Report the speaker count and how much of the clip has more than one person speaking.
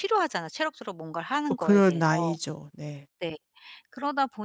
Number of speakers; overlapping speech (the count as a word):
two, about 15%